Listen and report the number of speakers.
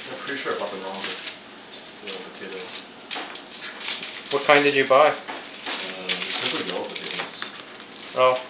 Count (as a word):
two